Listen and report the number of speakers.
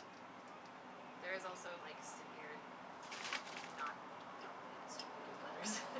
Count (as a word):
one